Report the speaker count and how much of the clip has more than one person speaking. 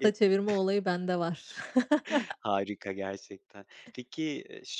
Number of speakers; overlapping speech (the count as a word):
two, about 3%